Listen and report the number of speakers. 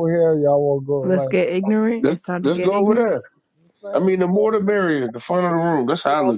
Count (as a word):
three